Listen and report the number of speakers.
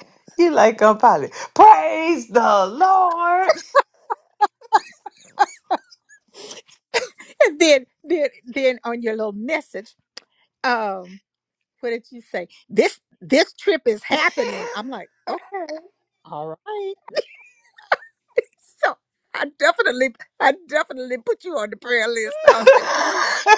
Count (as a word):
two